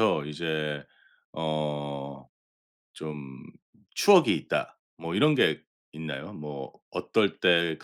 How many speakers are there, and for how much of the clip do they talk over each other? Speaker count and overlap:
1, no overlap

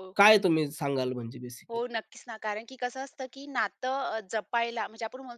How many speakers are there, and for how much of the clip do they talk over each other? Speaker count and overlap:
2, about 4%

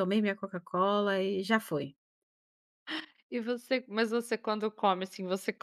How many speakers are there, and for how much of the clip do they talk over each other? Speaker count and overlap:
2, no overlap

